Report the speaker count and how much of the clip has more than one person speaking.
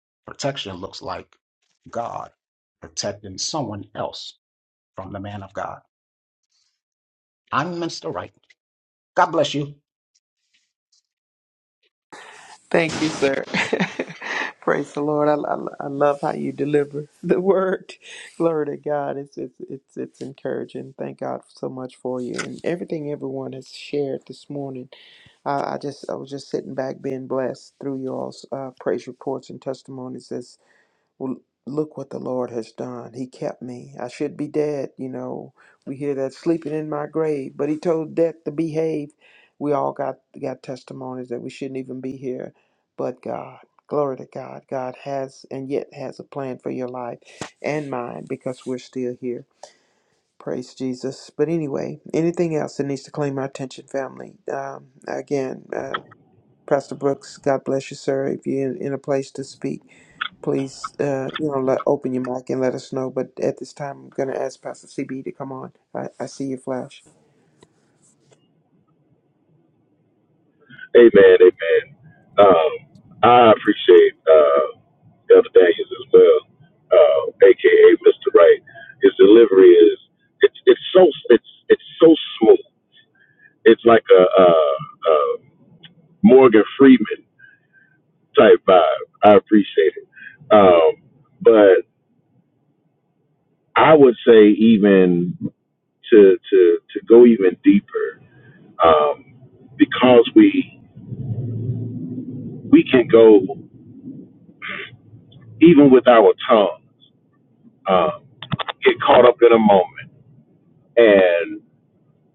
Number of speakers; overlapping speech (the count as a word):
three, no overlap